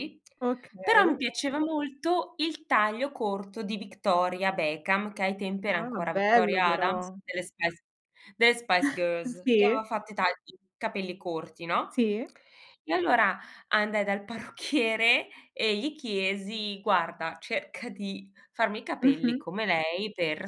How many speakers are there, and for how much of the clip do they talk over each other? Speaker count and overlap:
2, about 12%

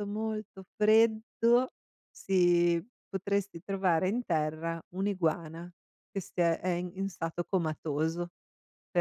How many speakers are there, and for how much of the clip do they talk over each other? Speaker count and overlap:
1, no overlap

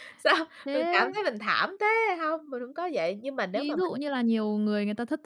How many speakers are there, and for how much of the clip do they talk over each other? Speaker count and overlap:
2, about 17%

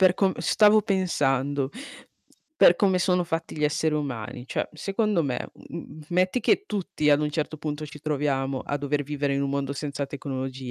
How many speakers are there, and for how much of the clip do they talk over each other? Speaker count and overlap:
1, no overlap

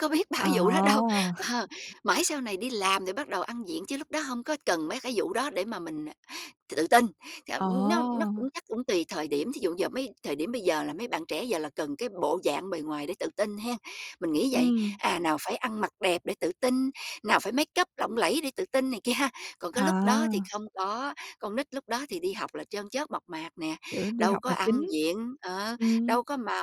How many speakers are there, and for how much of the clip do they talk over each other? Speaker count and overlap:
2, about 15%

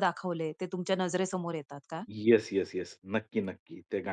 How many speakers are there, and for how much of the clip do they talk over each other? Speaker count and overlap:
2, no overlap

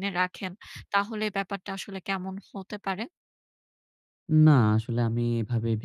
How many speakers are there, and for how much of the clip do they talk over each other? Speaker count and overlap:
2, no overlap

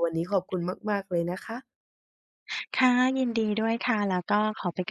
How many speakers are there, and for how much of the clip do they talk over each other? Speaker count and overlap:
2, no overlap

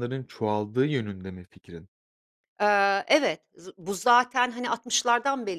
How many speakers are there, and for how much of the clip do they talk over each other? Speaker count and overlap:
2, no overlap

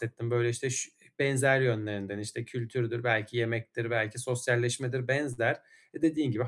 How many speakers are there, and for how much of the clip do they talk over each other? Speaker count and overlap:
1, no overlap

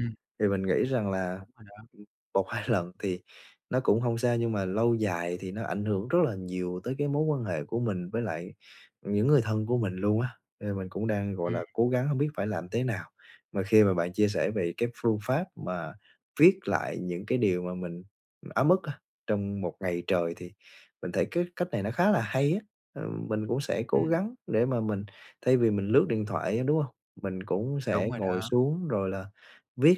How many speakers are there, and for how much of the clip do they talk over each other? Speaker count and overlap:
2, about 3%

